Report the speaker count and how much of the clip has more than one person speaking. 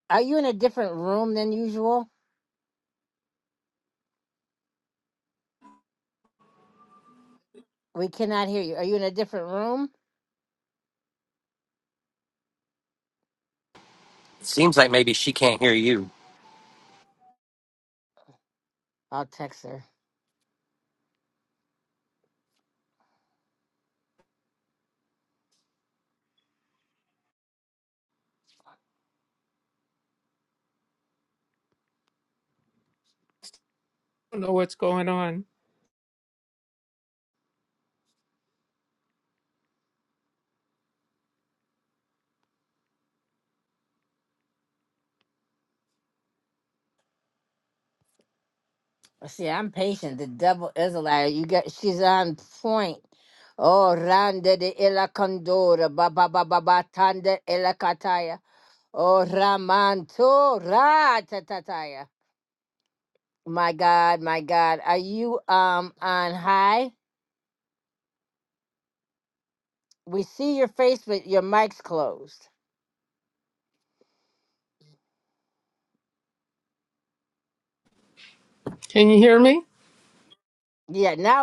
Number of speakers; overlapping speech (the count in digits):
3, no overlap